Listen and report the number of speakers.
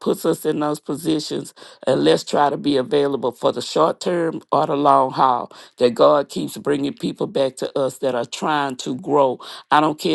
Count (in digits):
1